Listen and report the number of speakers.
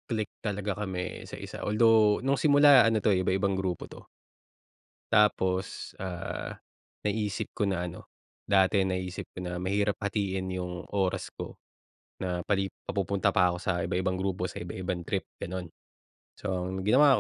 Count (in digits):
1